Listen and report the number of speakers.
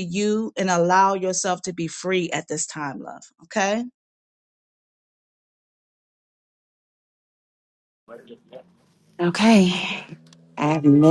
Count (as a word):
two